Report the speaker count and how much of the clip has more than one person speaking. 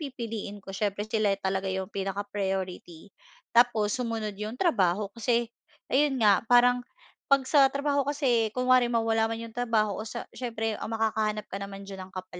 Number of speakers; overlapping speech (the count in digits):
1, no overlap